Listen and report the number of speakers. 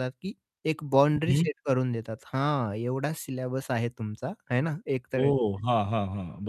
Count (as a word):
two